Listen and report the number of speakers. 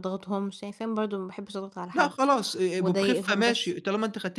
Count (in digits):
2